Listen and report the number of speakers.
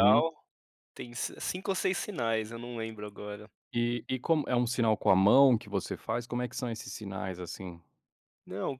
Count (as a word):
two